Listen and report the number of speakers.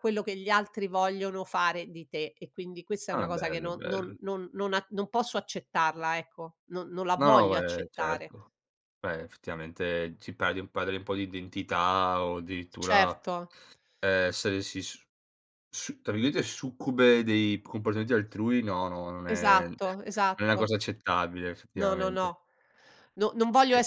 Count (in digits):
2